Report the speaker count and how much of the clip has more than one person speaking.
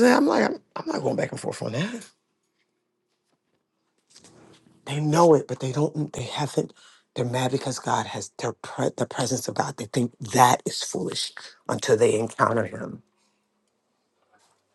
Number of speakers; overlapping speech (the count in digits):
1, no overlap